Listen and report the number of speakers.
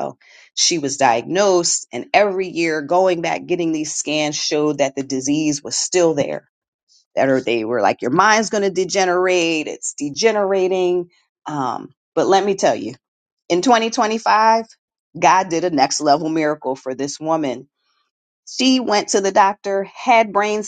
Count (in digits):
1